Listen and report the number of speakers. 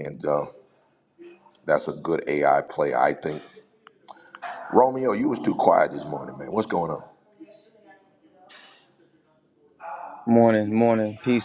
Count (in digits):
2